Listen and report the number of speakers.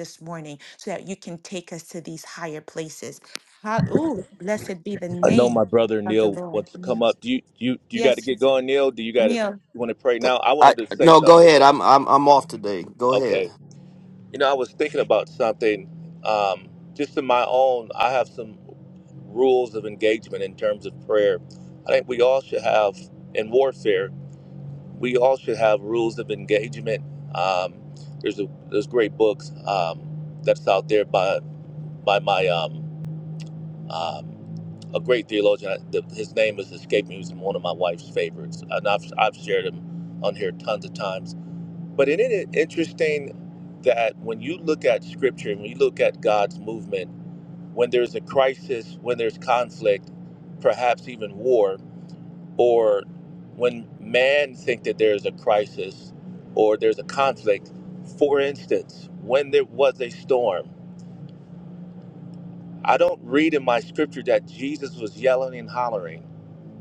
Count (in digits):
3